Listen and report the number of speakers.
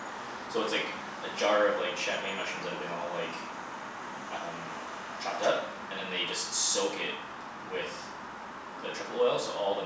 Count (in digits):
1